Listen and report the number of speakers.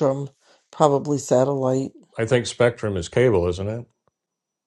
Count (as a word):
two